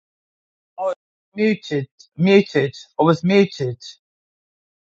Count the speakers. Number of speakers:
one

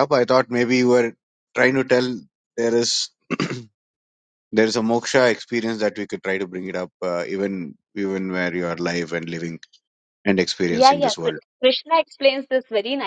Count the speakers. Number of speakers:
two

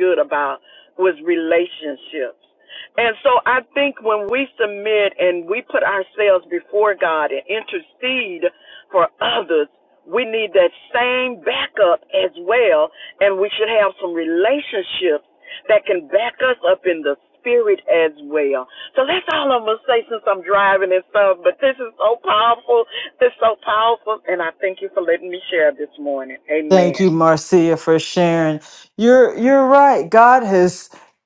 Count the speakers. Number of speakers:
two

